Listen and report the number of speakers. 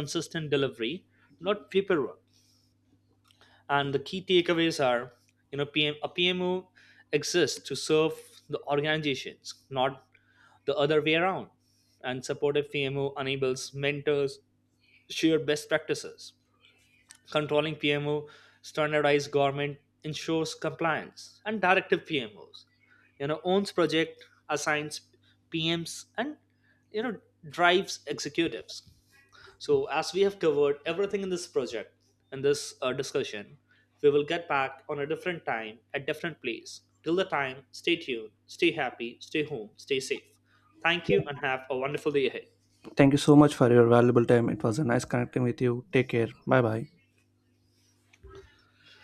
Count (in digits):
2